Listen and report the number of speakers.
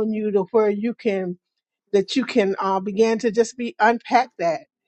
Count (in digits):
1